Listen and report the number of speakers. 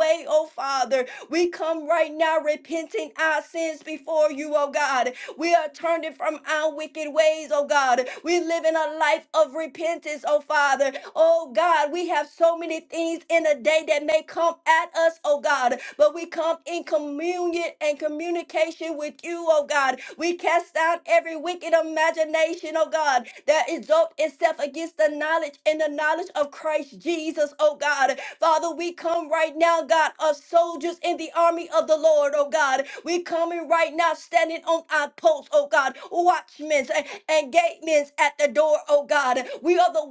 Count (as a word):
one